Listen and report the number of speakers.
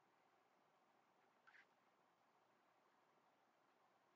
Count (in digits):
0